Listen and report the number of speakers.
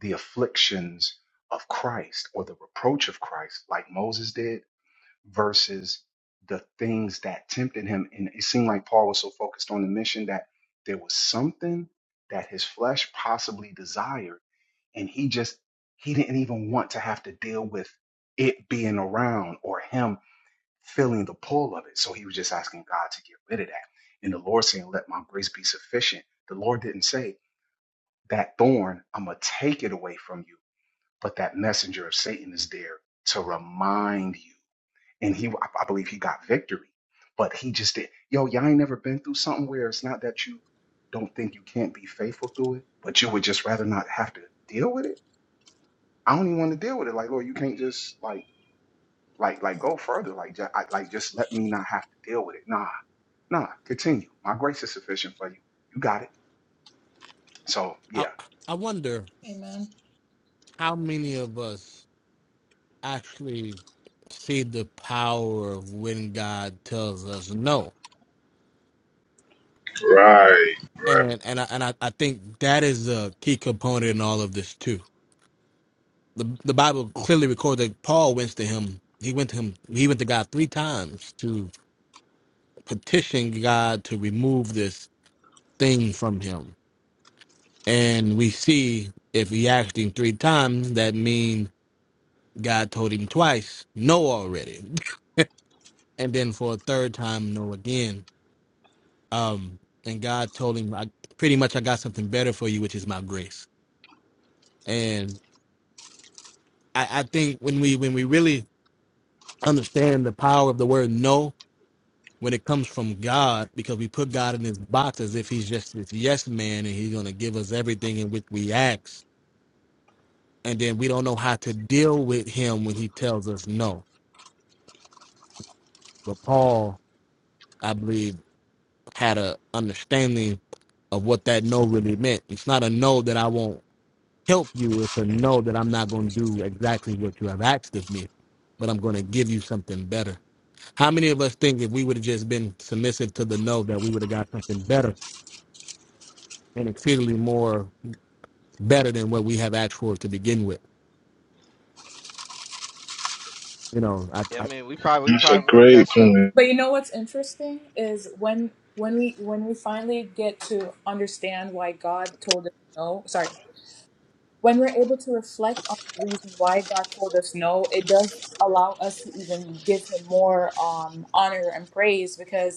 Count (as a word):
five